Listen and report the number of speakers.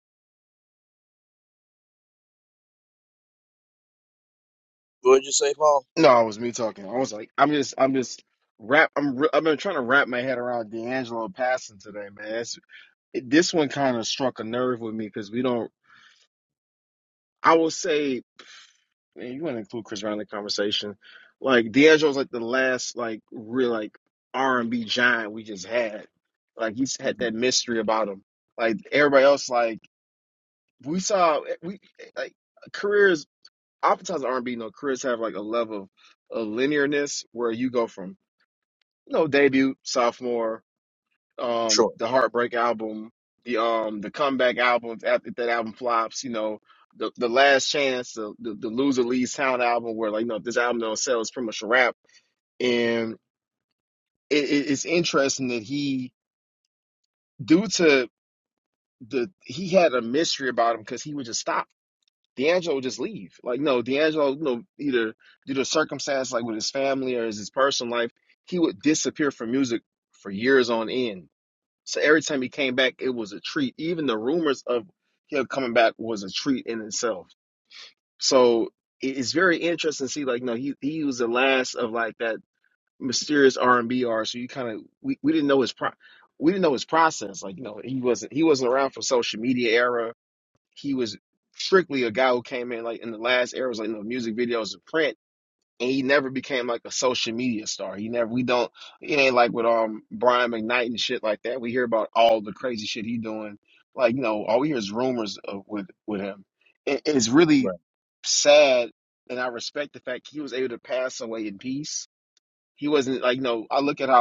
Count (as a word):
two